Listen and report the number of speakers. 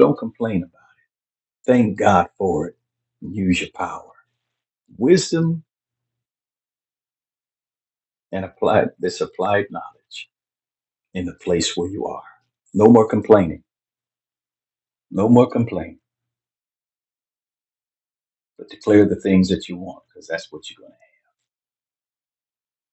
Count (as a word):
one